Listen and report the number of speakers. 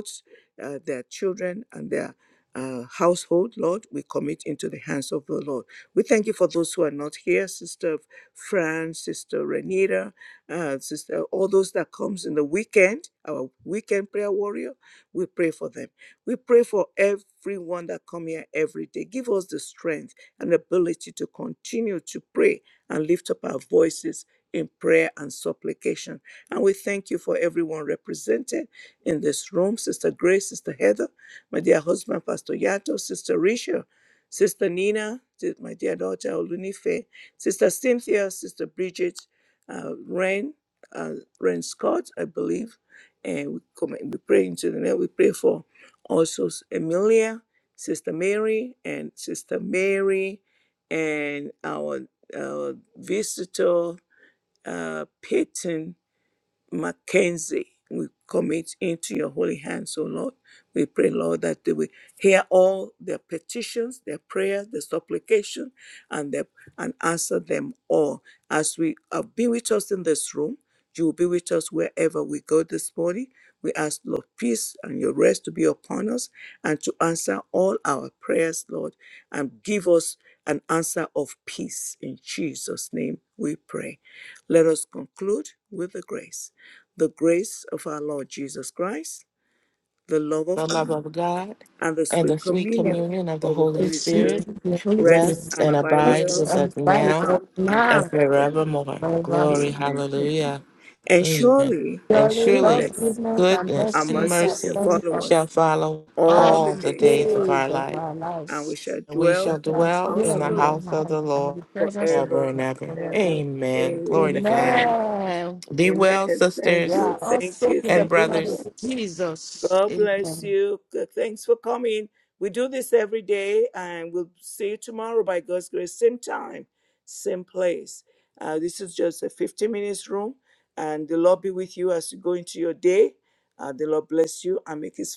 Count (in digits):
3